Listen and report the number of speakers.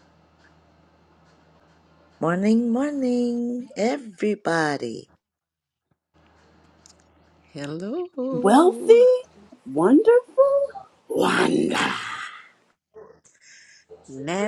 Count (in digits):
3